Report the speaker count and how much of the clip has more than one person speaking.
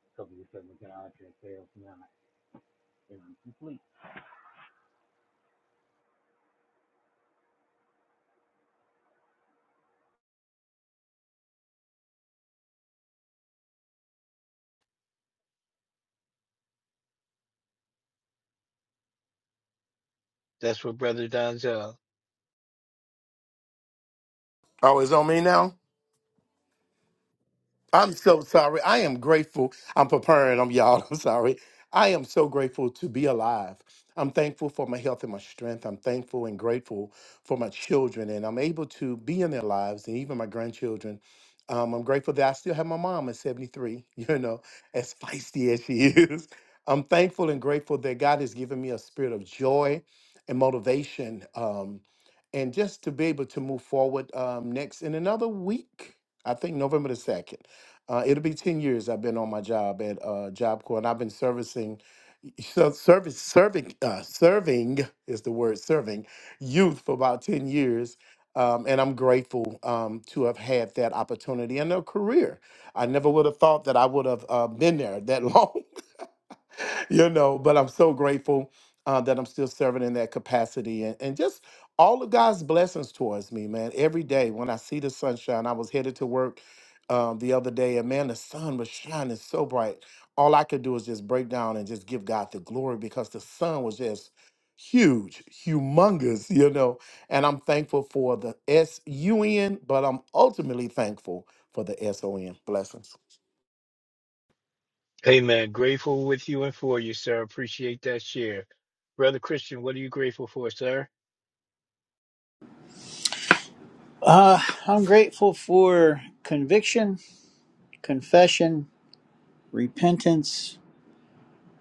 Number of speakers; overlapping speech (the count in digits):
4, no overlap